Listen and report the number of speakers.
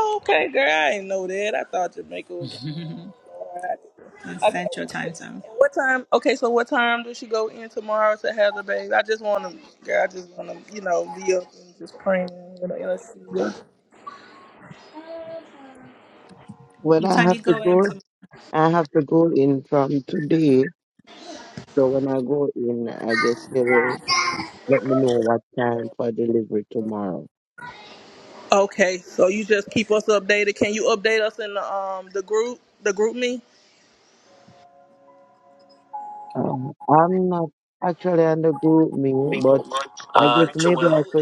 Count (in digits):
3